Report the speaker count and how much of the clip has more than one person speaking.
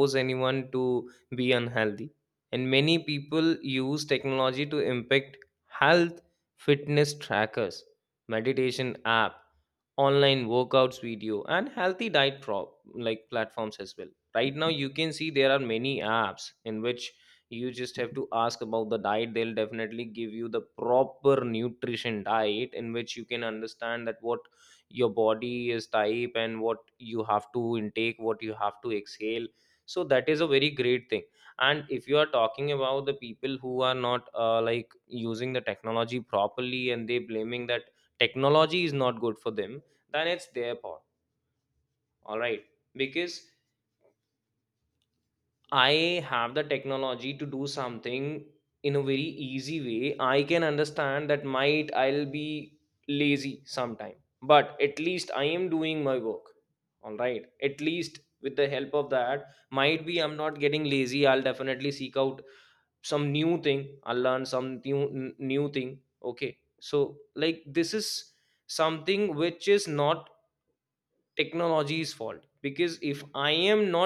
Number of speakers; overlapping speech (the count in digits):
1, no overlap